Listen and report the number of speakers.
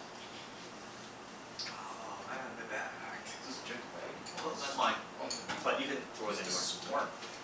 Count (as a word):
two